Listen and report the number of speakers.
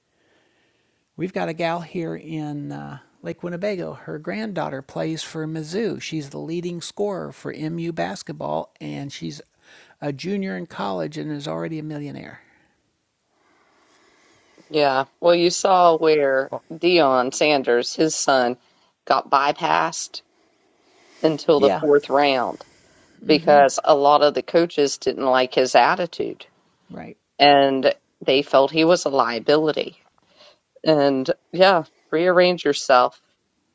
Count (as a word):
two